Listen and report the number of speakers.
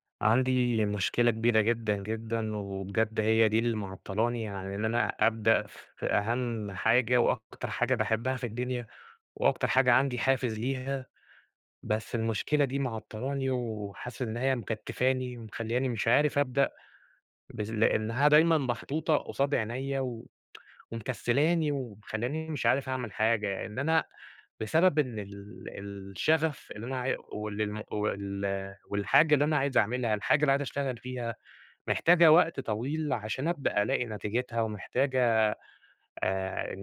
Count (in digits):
1